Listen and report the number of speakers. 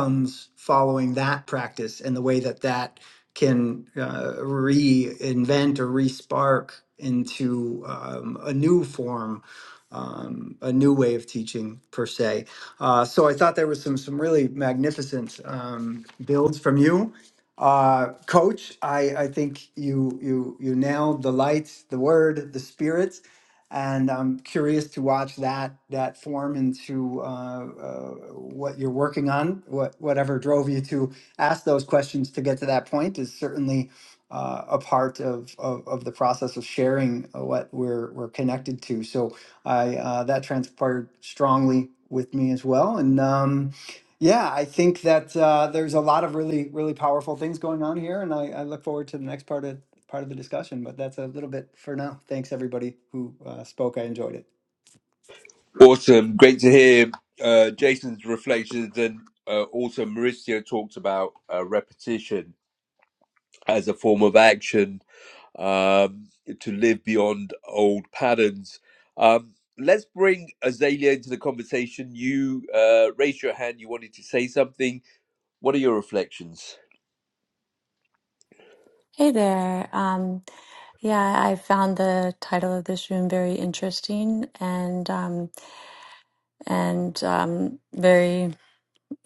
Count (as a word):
three